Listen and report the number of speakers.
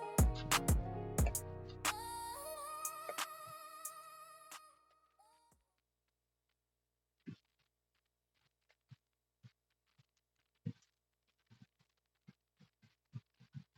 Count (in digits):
0